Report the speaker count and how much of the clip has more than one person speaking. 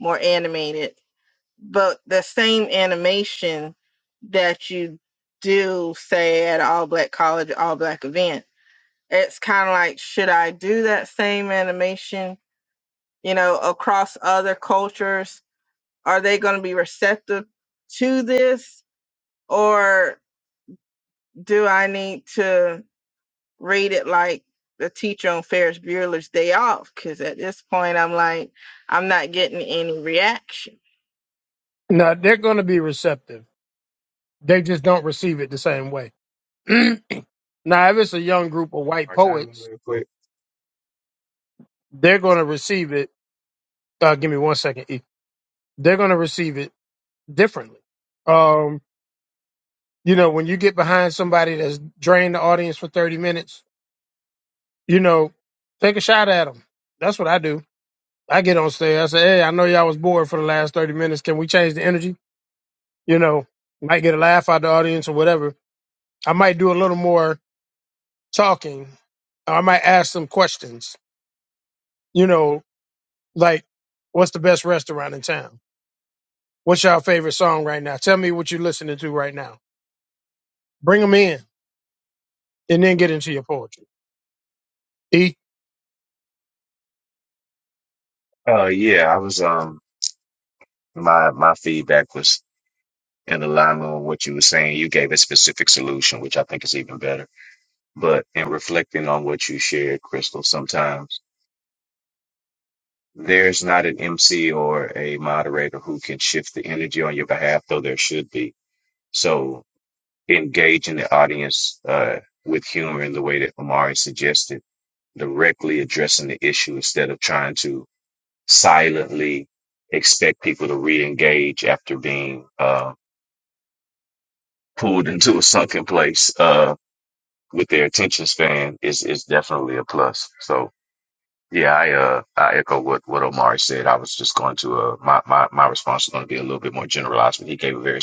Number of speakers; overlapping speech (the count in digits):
3, under 1%